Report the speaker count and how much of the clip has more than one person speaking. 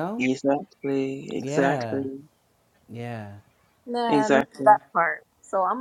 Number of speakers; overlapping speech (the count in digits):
3, about 23%